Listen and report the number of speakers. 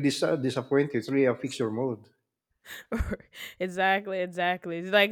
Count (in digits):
2